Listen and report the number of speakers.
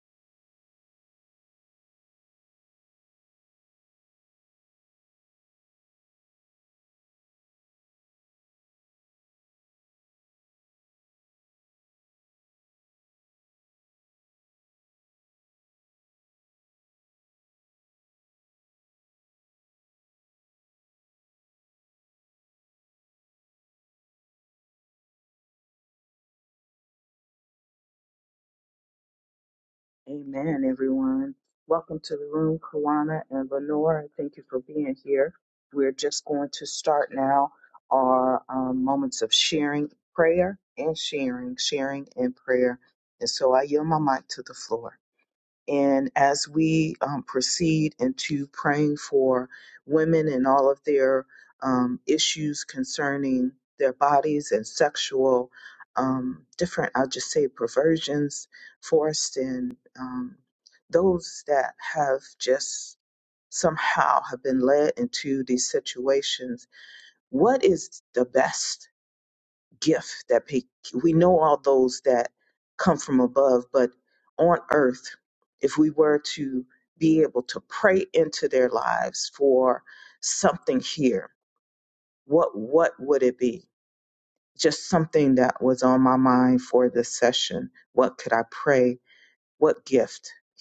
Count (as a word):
one